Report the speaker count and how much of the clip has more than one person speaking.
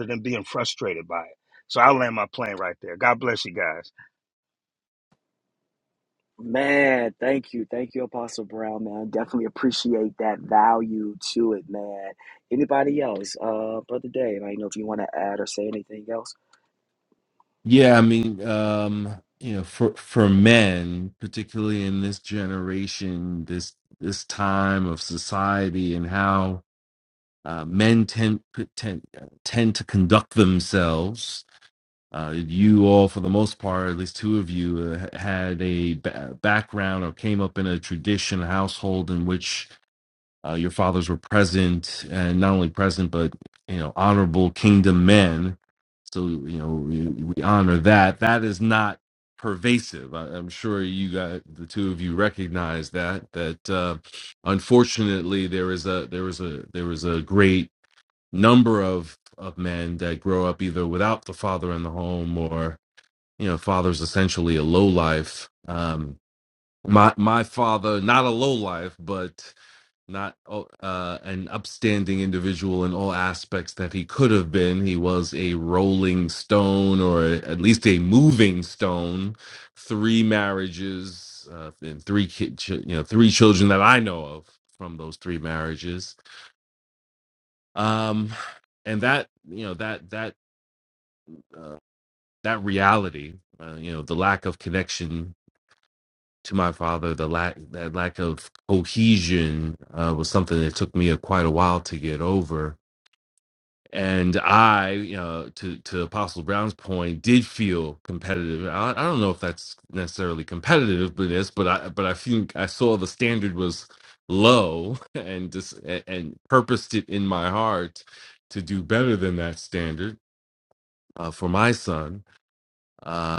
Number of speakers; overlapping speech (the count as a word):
three, no overlap